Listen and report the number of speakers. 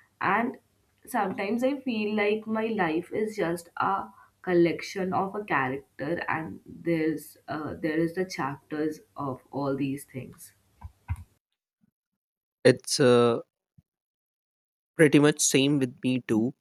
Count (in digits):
2